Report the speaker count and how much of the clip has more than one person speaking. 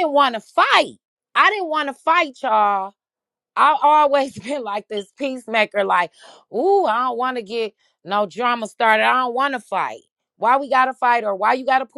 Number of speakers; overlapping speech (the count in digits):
1, no overlap